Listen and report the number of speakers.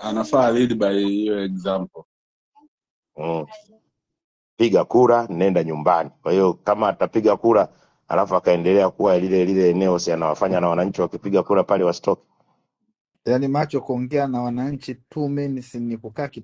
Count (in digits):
3